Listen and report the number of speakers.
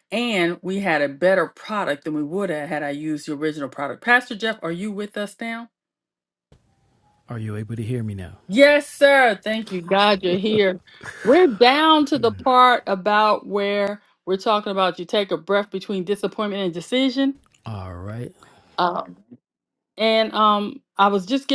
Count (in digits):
2